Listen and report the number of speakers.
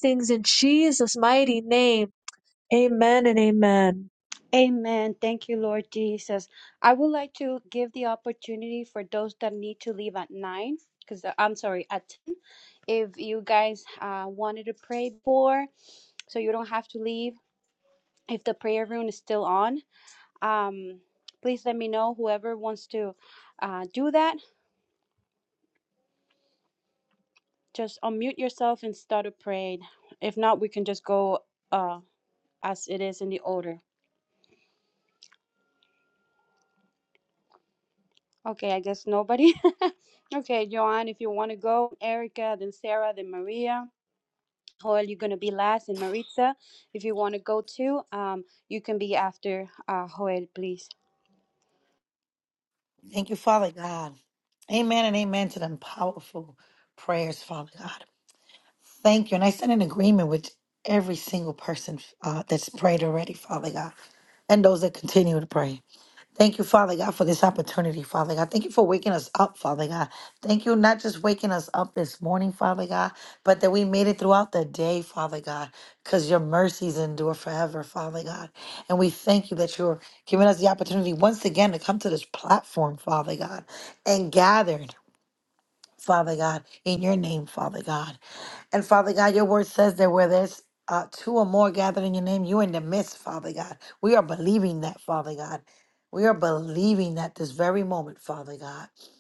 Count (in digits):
3